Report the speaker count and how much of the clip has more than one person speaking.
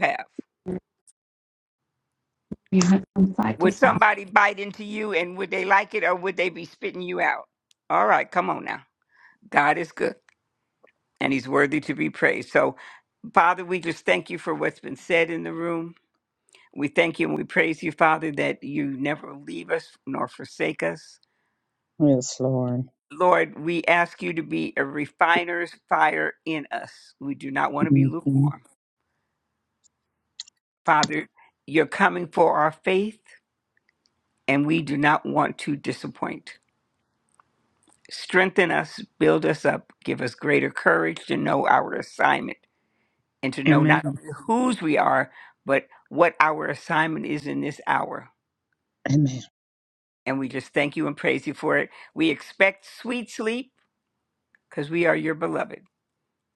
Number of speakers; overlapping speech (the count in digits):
3, about 2%